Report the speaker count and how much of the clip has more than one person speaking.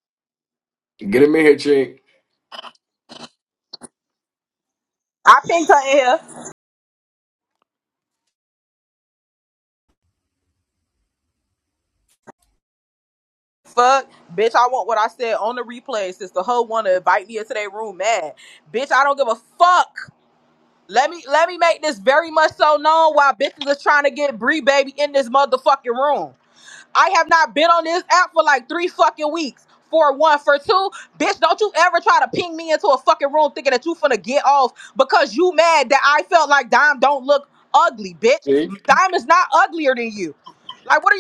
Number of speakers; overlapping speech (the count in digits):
2, no overlap